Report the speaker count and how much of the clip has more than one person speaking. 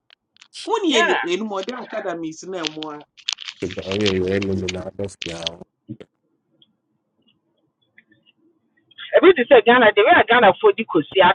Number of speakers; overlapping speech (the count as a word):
three, about 3%